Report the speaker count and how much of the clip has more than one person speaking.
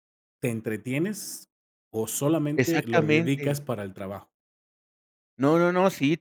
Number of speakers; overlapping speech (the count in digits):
2, about 16%